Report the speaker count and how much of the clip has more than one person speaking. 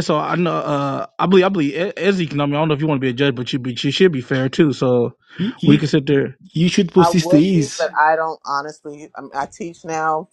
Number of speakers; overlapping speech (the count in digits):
3, about 11%